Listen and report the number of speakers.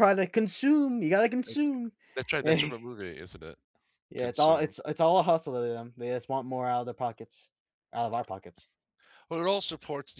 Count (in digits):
2